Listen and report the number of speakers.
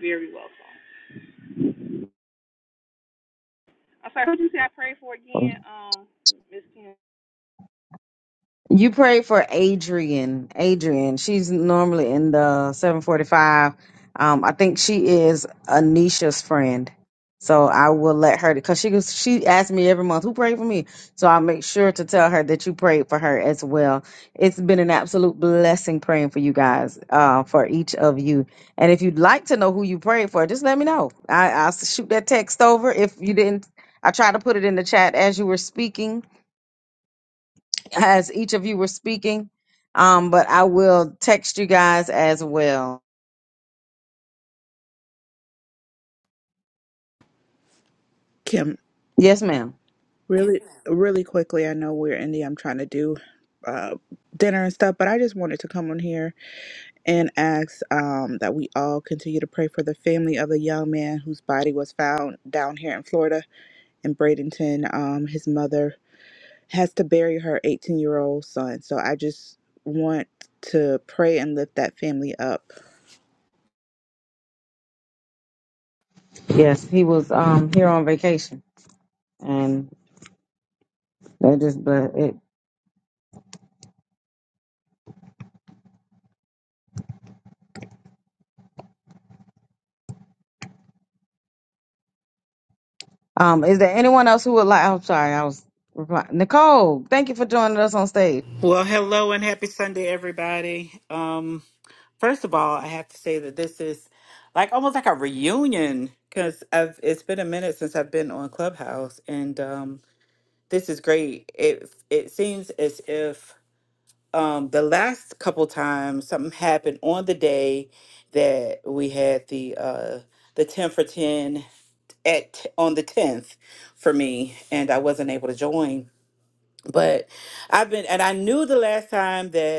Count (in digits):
4